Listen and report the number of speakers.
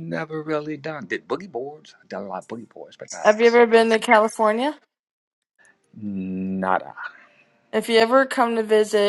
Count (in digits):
2